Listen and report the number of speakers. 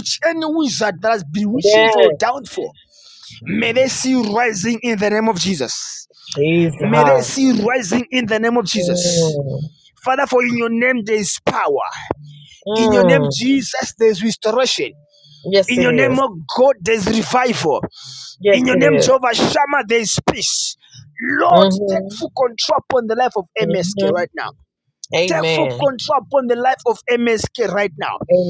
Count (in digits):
2